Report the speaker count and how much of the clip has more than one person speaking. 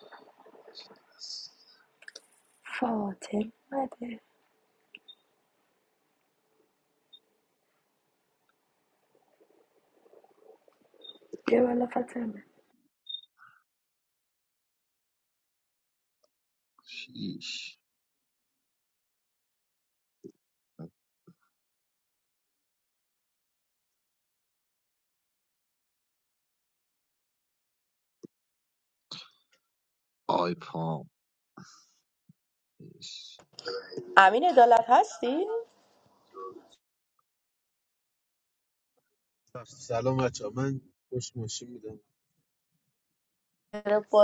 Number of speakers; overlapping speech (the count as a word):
four, no overlap